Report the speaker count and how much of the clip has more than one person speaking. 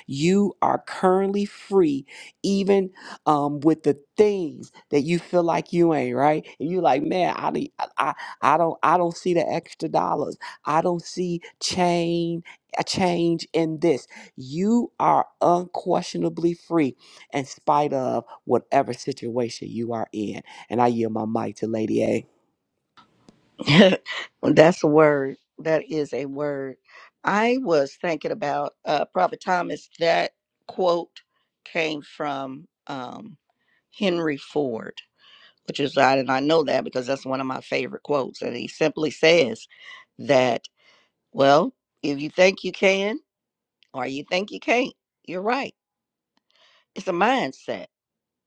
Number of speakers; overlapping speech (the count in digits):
2, no overlap